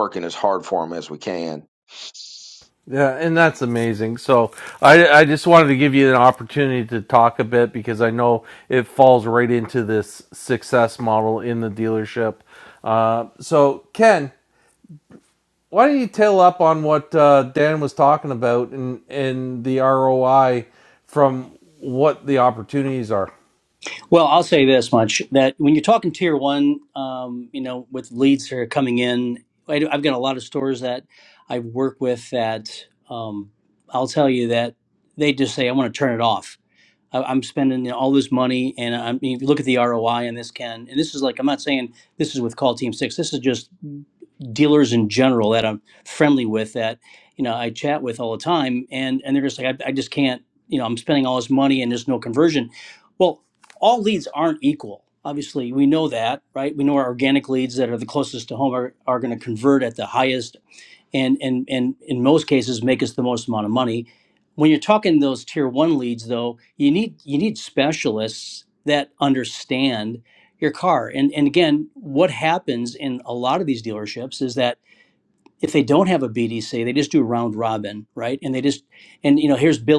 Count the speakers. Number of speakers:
3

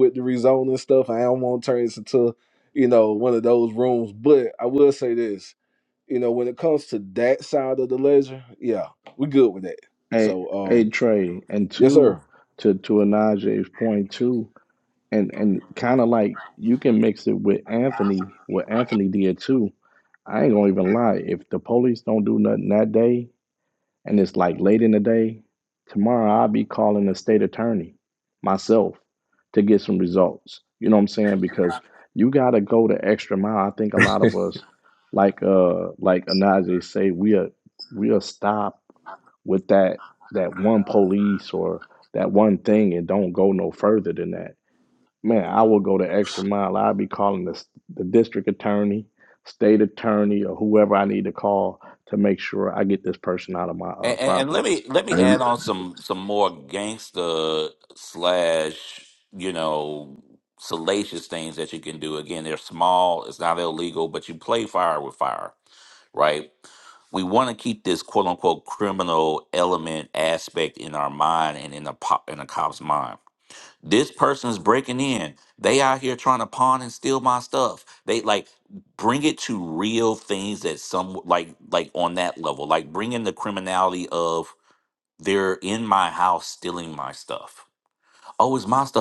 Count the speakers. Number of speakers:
3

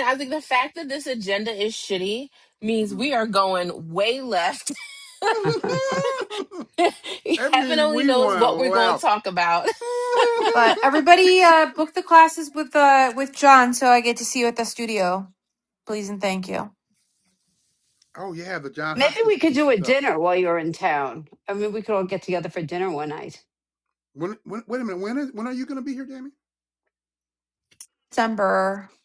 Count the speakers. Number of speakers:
4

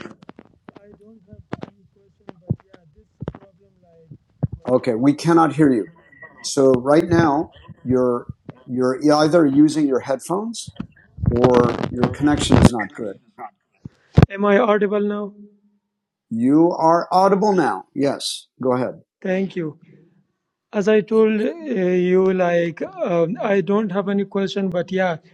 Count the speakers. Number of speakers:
2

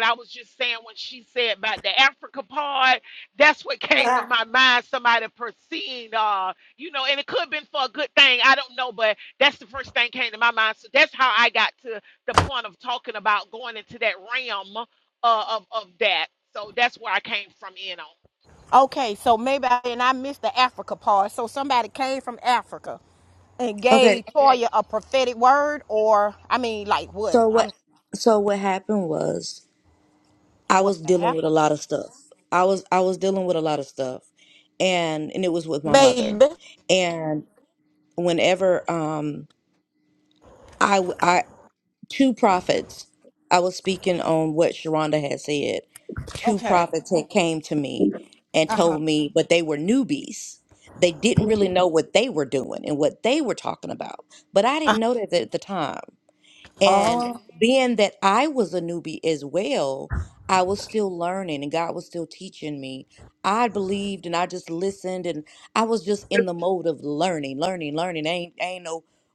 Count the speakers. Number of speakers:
3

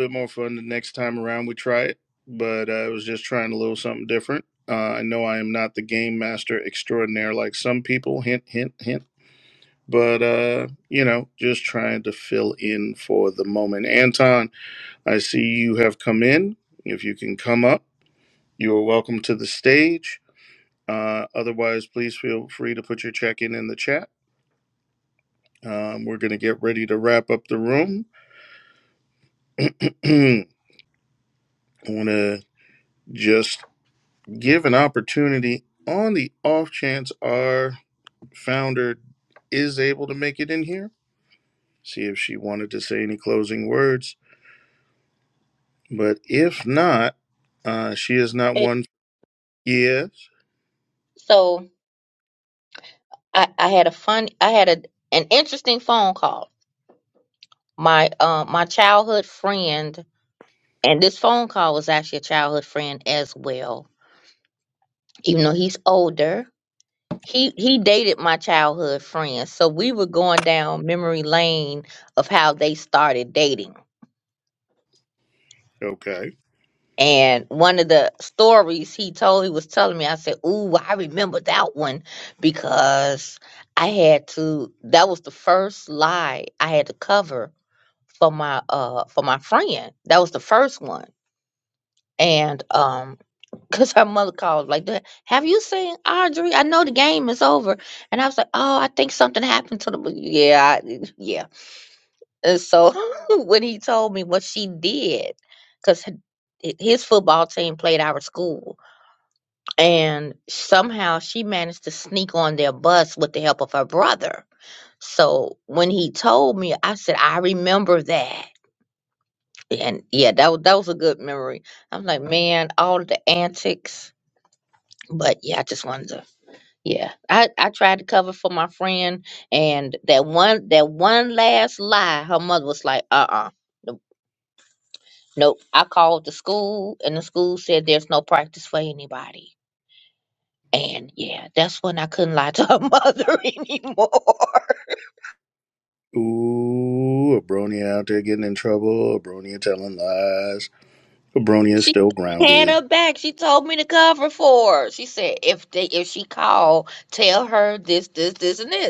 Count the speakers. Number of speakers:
2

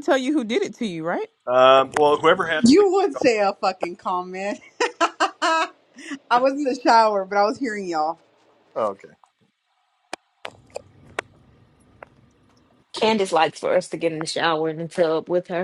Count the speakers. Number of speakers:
4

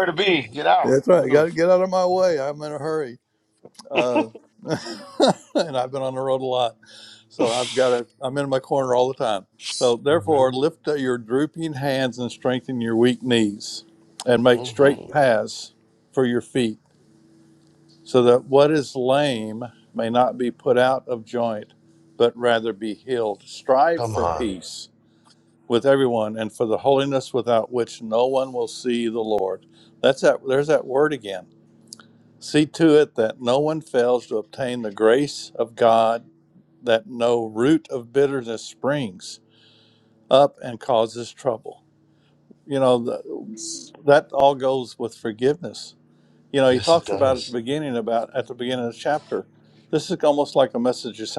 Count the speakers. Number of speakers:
2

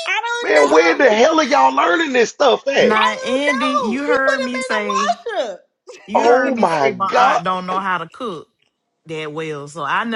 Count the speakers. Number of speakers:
3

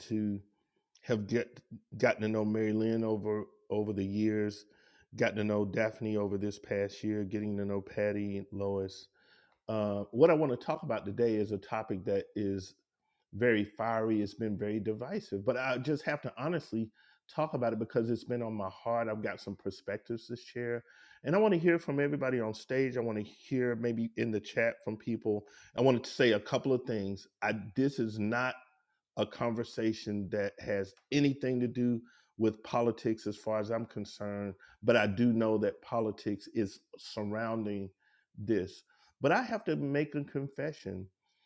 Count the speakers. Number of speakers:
1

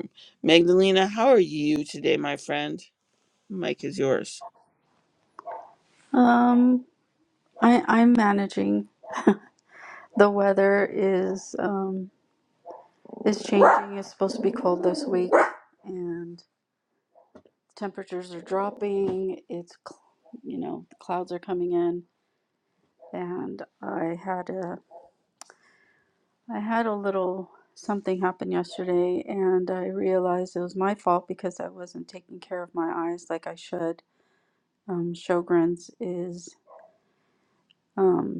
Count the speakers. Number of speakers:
2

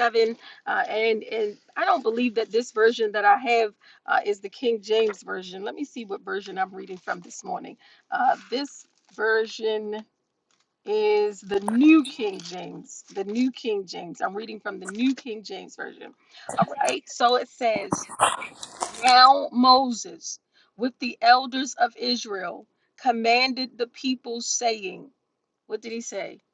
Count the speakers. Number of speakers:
1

